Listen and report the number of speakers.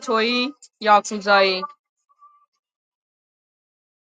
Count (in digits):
1